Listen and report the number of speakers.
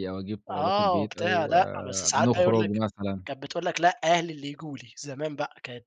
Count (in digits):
2